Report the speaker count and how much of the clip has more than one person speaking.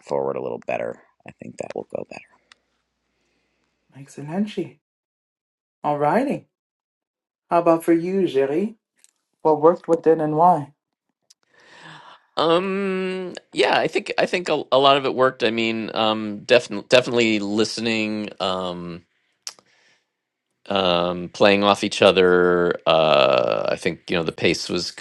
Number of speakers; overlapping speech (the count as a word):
three, no overlap